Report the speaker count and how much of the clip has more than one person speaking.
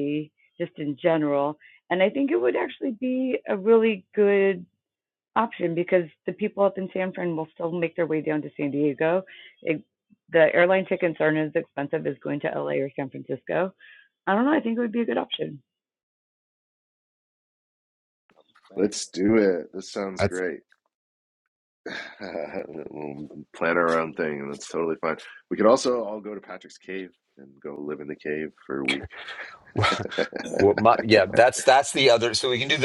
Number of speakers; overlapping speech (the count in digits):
3, under 1%